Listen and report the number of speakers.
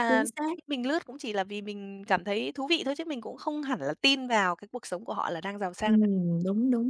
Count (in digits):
2